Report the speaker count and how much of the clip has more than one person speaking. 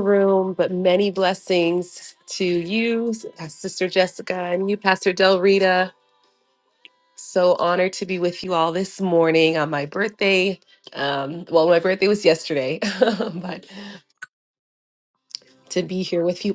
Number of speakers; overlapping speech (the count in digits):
1, no overlap